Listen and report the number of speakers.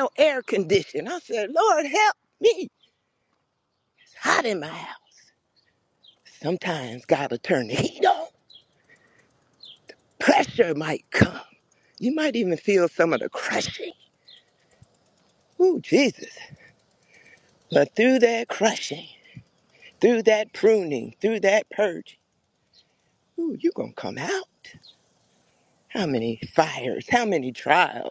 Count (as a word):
one